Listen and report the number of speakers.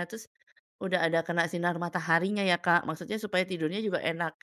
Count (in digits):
1